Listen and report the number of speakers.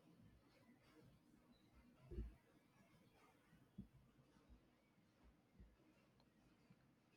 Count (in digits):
0